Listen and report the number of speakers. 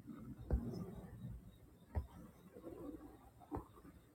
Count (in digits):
0